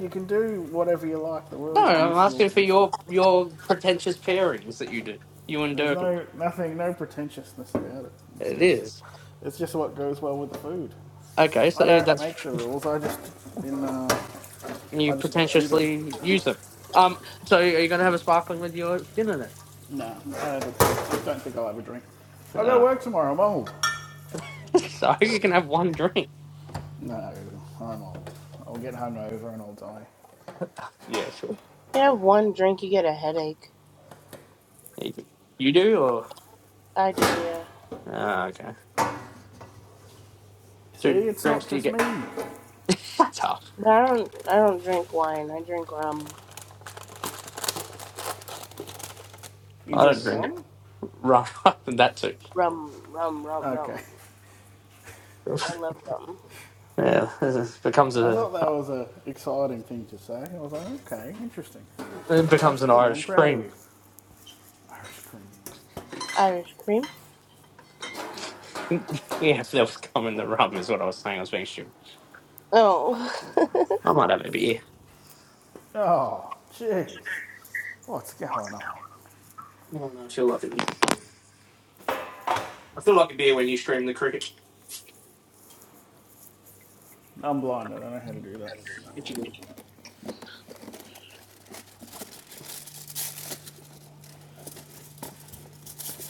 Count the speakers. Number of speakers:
three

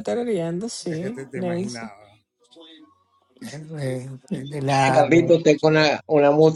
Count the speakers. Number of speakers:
three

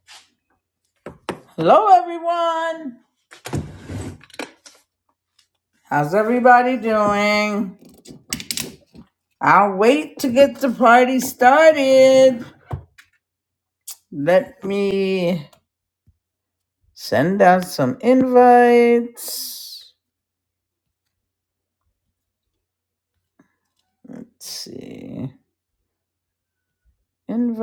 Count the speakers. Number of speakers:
one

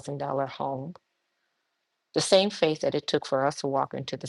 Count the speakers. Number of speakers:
one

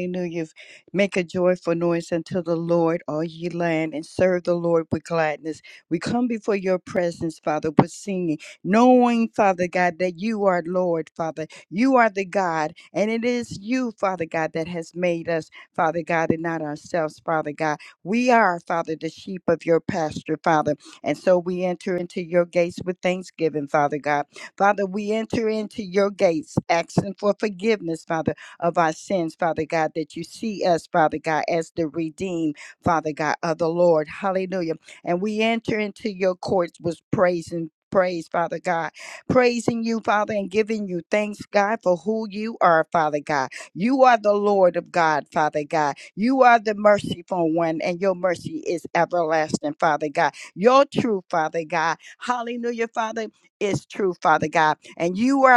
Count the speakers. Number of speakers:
one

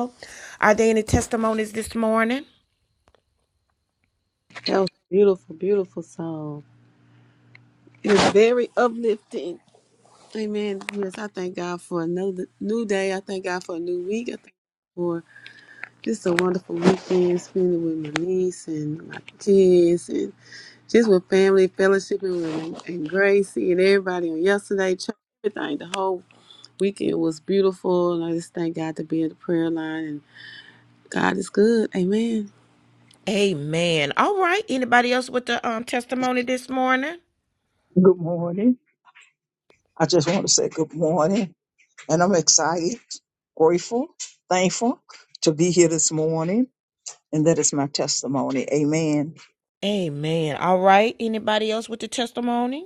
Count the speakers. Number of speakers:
three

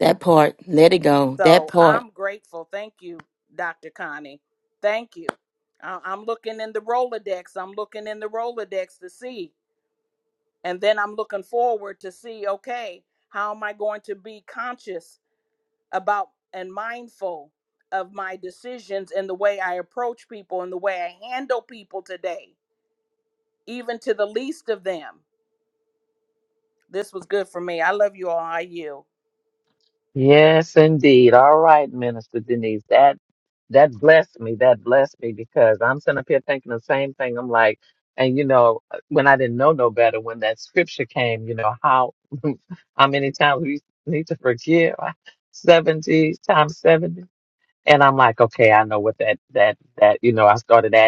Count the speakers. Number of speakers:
three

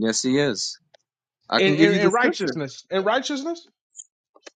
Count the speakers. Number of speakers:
two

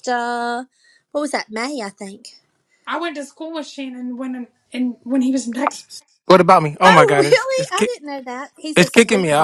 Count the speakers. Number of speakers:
three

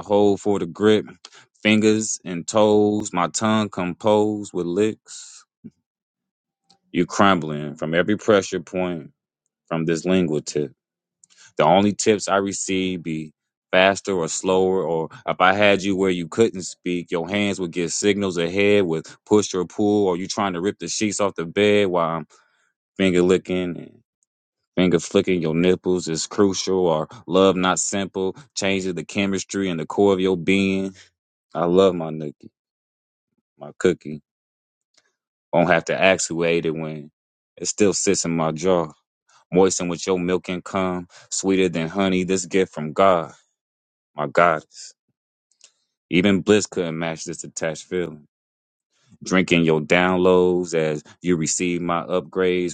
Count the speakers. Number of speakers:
one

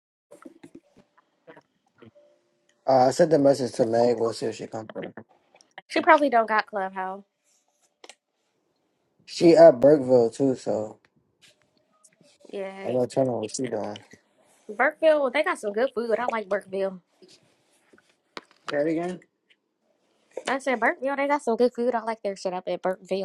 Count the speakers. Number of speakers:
two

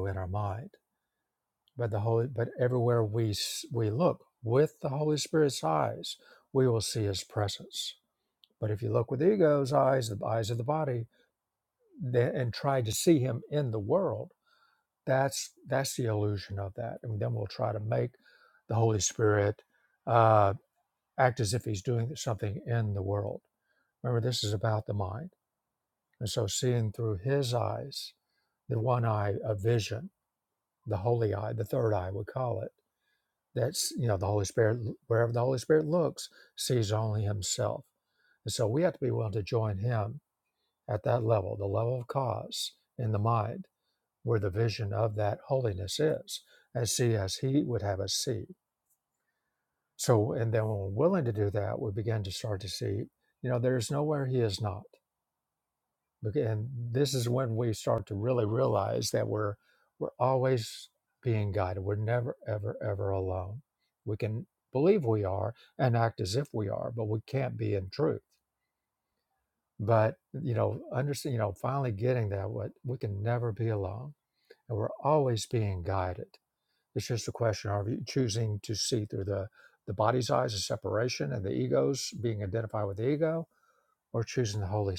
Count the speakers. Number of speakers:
one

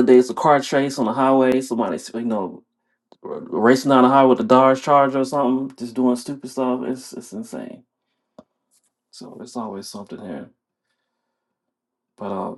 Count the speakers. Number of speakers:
one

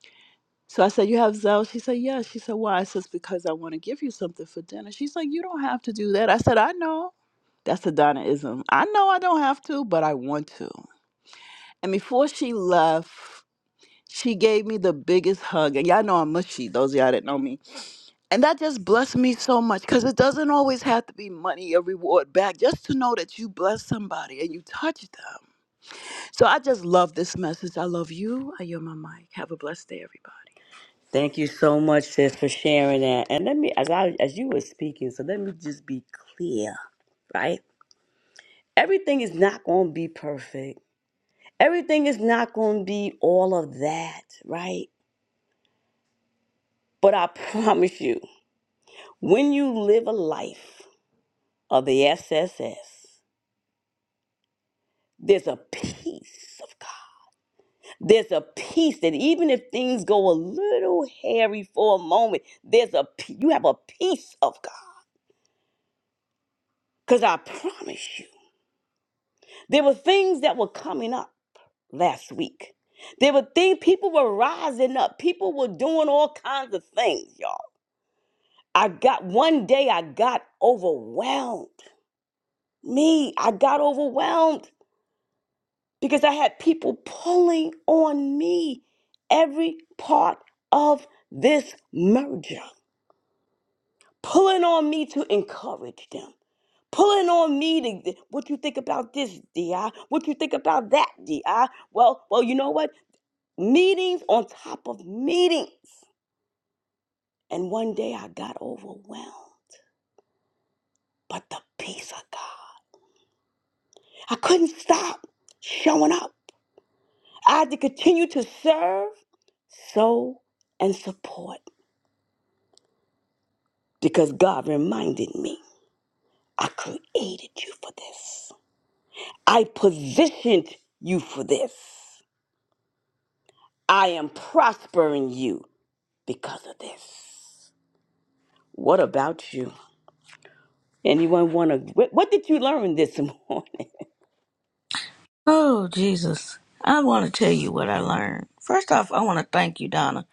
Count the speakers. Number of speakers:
three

